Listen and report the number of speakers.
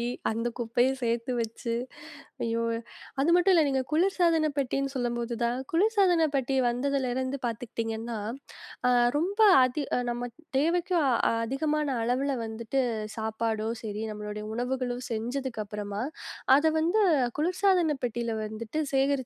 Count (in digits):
1